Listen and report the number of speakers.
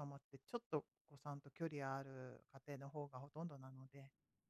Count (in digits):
1